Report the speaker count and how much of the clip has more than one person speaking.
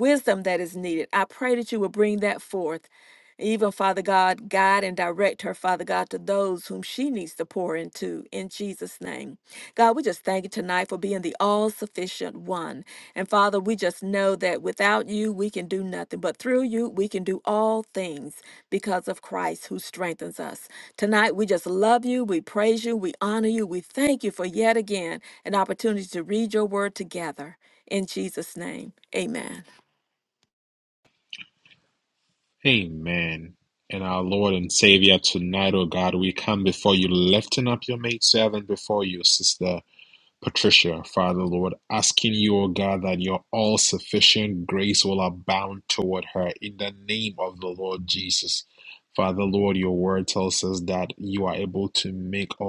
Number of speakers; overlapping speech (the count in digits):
2, no overlap